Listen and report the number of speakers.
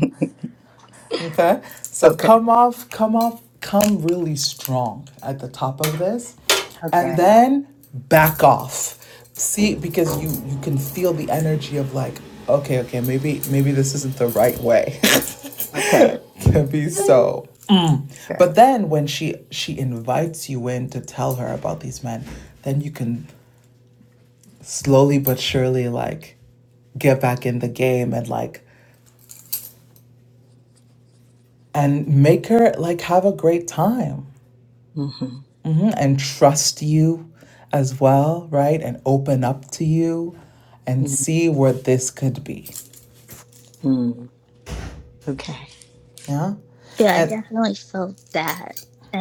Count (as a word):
three